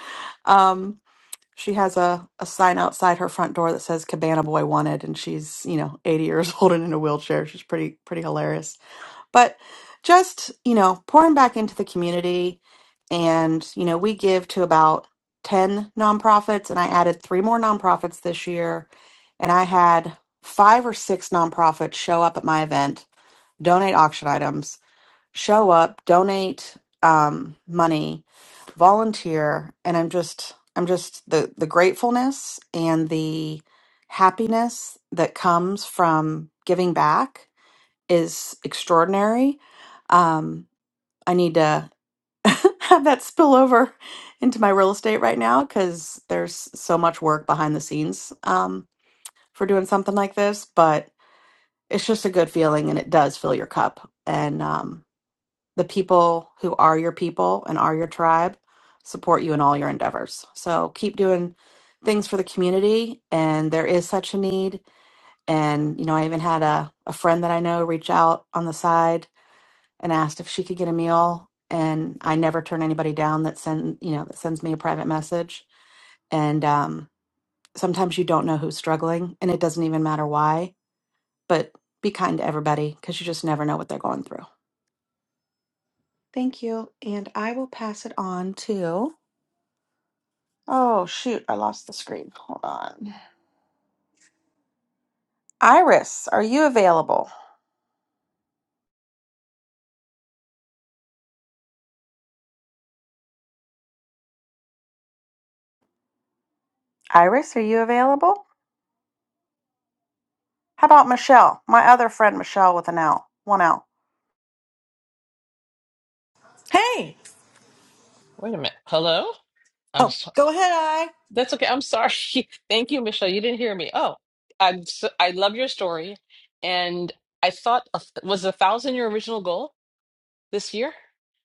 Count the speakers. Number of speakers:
3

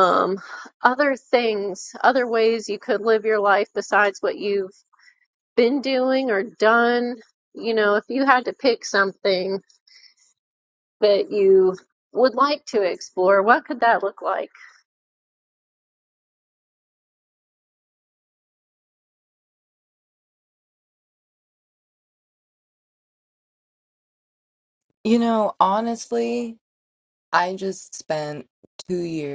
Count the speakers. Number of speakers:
2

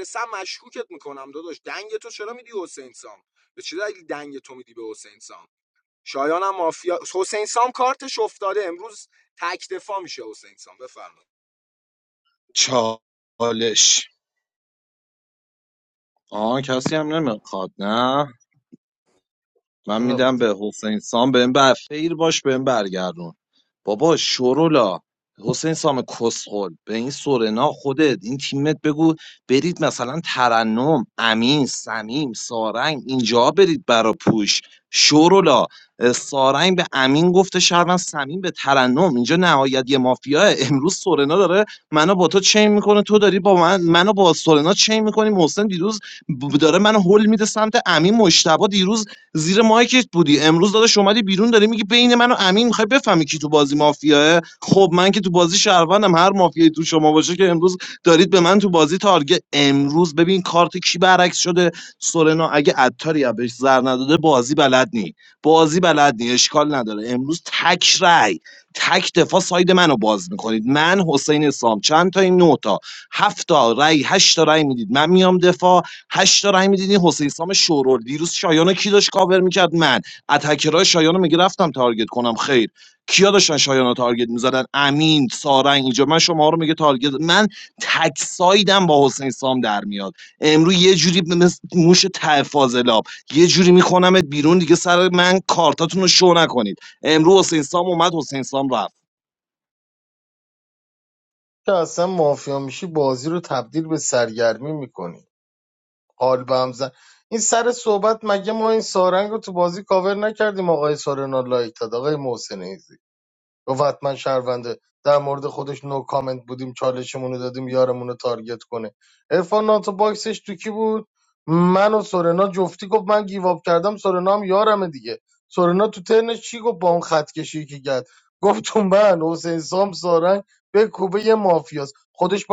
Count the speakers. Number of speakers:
3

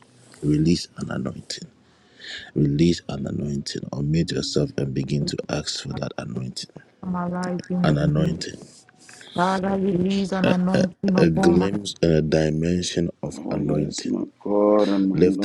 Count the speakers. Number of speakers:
3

